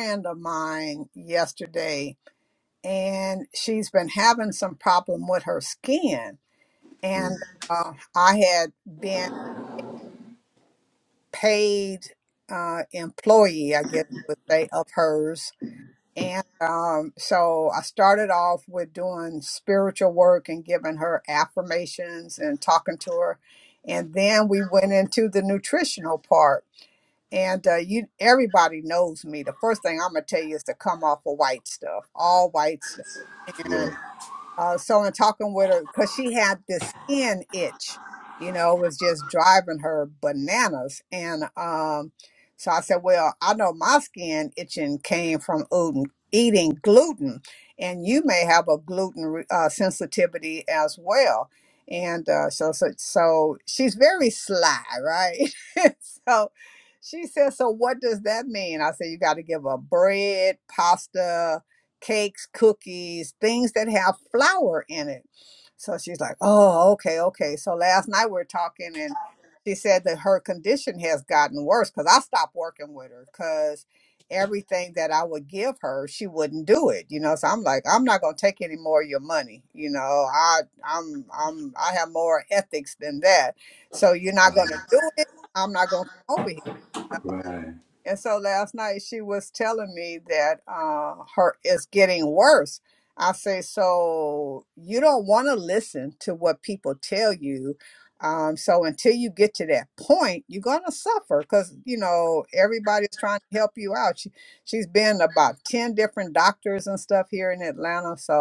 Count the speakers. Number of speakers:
2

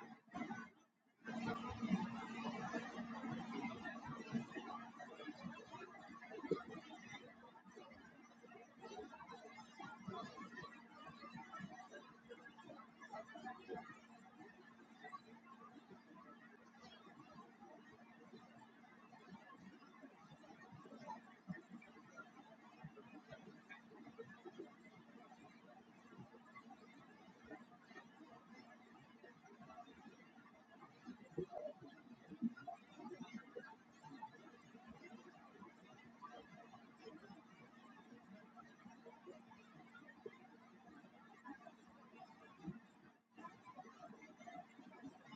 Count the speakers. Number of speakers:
0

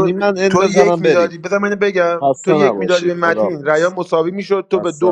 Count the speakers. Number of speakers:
2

